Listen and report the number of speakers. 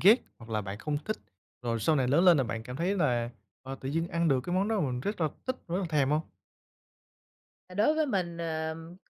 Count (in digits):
2